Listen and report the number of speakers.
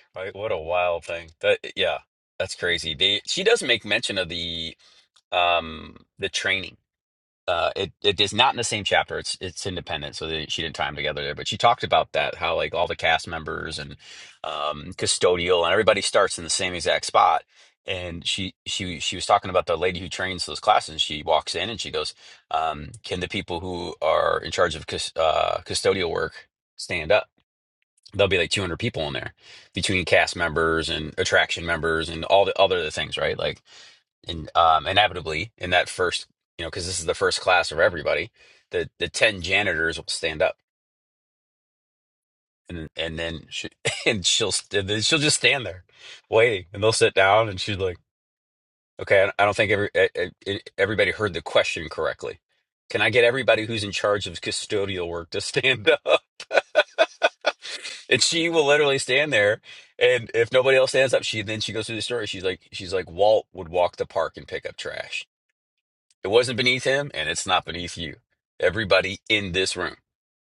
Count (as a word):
one